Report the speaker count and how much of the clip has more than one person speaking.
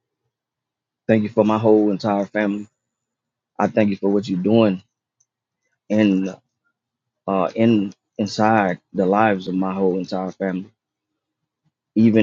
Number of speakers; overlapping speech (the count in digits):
1, no overlap